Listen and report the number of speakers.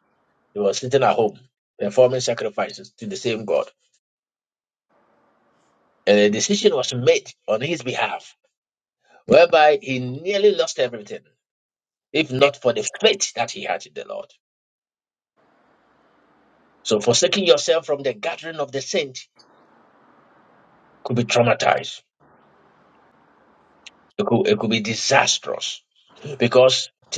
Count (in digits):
1